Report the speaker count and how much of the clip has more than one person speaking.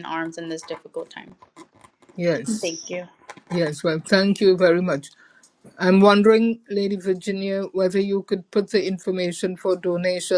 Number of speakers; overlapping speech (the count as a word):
two, no overlap